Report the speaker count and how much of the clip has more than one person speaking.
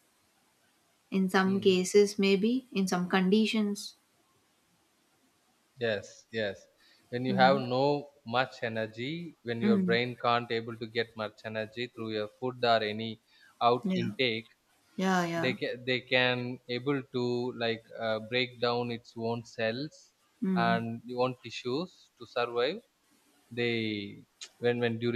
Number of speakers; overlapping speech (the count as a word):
two, about 6%